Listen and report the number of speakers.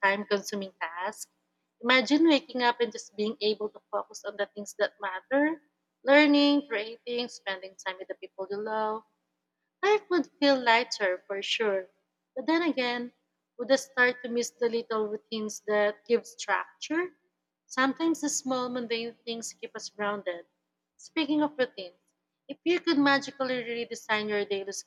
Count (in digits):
1